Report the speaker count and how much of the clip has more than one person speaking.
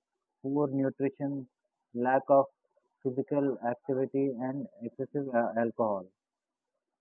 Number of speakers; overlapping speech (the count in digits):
1, no overlap